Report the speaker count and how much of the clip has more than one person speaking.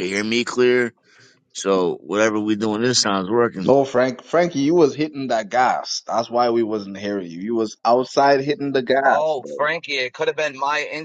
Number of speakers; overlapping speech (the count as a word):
three, about 2%